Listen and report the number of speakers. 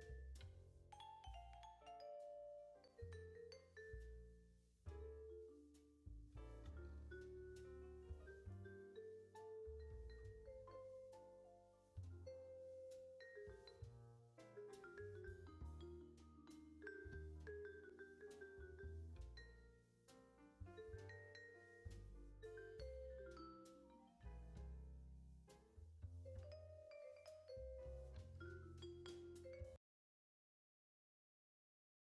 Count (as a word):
zero